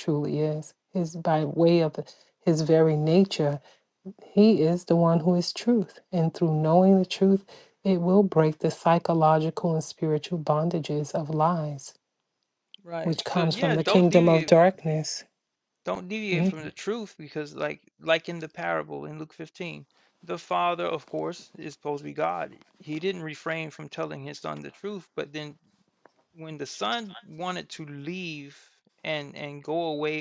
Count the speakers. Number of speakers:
two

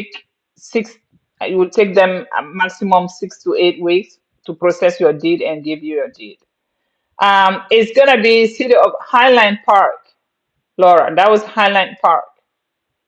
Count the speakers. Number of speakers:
one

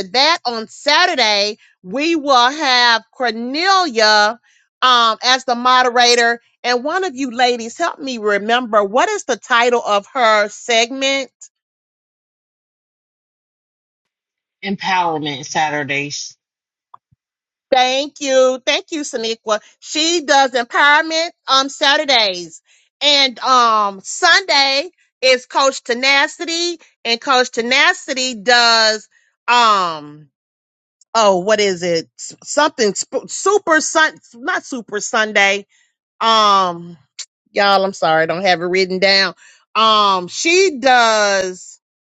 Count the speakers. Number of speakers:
two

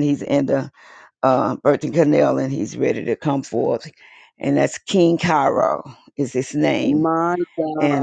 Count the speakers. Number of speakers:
two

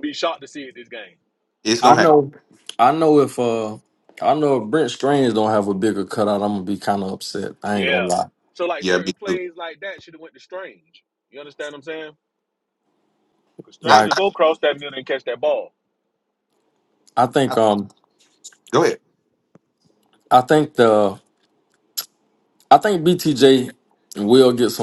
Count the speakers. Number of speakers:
three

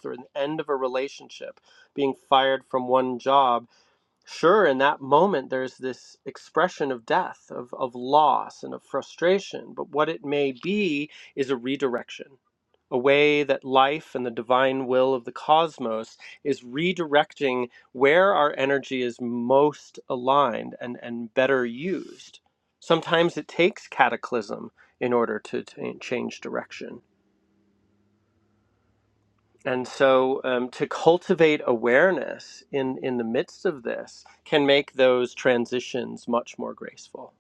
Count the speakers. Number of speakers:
one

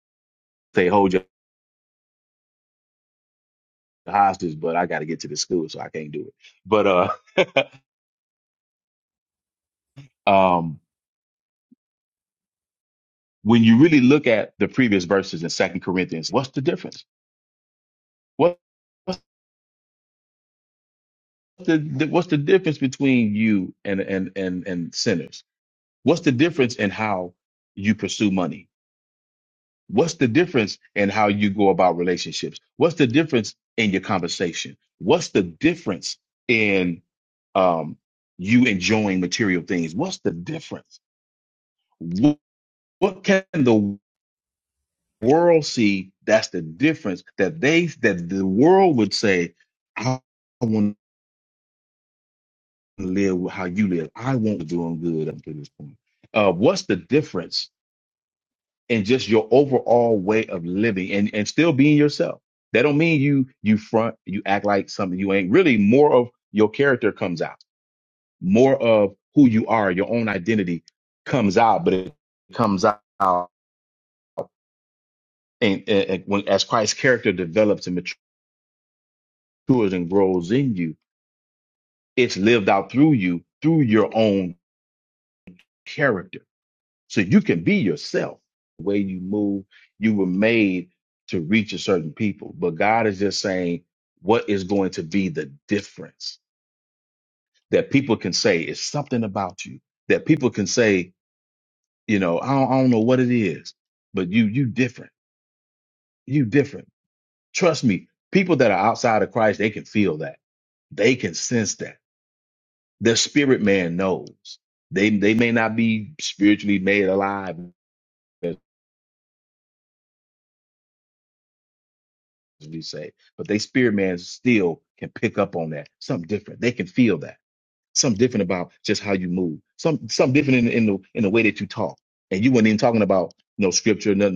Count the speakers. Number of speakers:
one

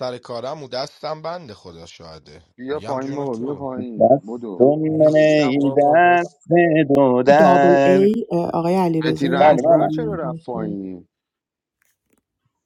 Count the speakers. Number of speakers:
four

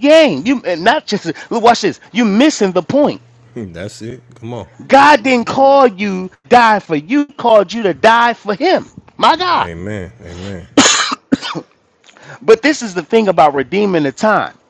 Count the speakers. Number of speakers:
two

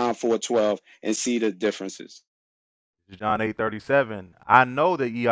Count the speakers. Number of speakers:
two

